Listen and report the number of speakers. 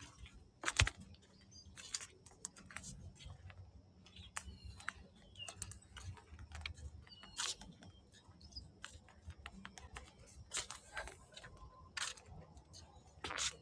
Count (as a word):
zero